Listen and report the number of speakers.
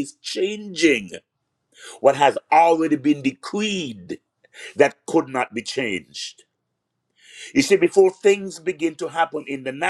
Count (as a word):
one